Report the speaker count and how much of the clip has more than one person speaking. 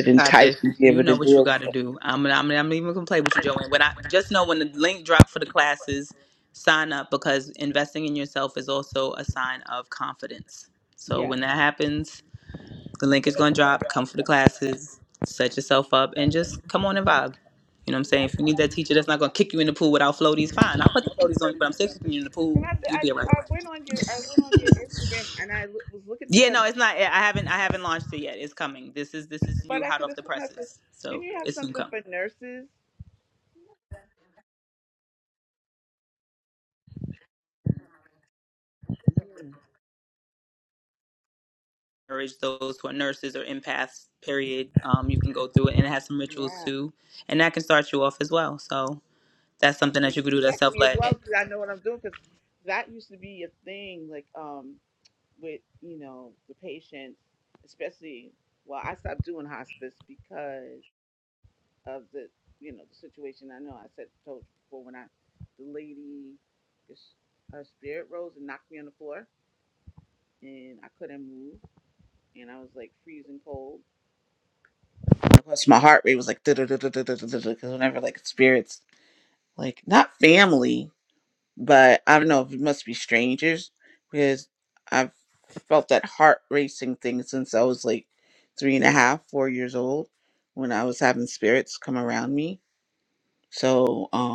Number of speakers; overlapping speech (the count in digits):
2, about 6%